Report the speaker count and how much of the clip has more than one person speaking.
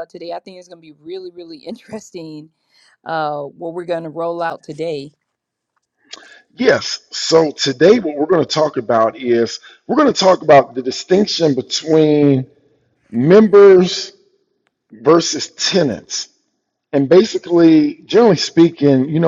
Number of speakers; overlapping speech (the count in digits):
2, no overlap